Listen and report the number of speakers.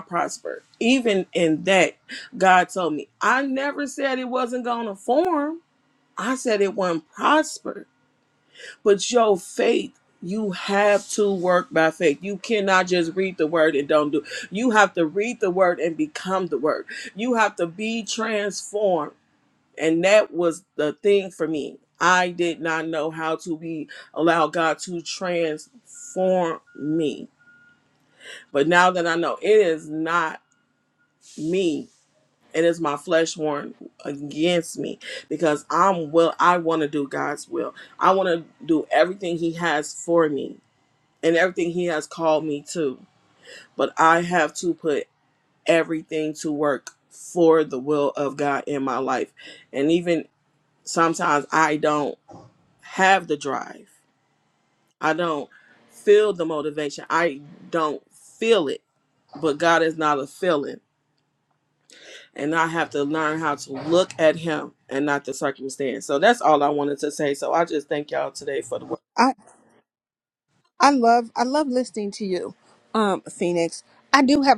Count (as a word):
two